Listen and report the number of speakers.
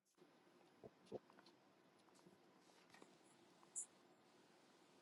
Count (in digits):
0